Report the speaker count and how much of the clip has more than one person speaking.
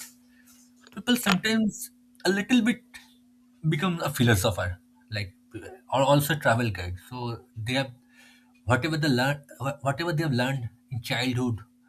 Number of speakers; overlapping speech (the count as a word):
one, no overlap